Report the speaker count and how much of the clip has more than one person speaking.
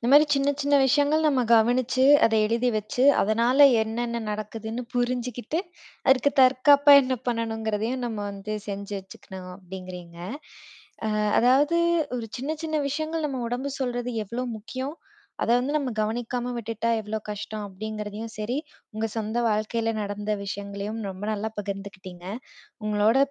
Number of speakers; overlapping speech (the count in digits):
1, no overlap